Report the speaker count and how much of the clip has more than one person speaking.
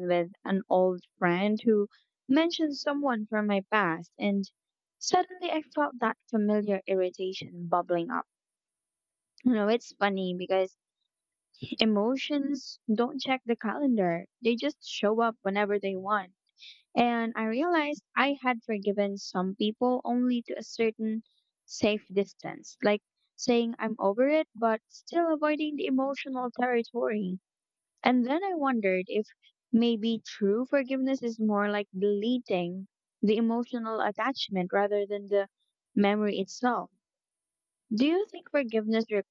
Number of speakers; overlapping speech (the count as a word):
one, no overlap